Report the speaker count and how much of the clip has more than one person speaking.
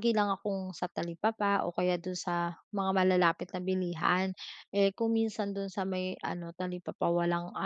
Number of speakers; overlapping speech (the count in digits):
1, no overlap